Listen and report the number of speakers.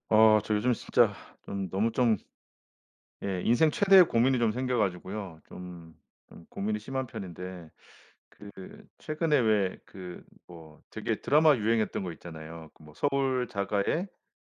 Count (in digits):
1